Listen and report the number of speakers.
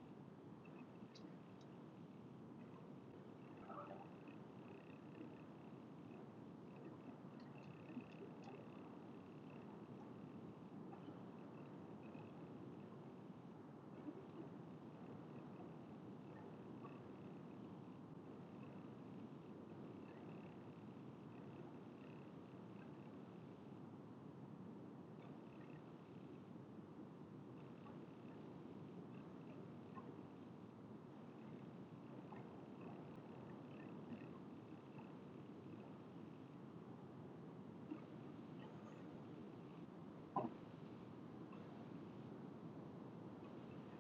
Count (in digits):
0